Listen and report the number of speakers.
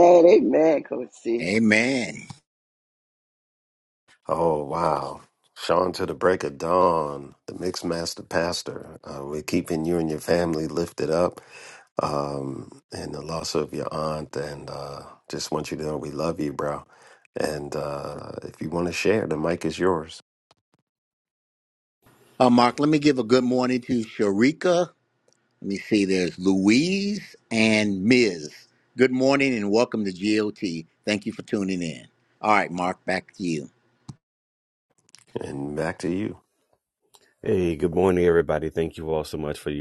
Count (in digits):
4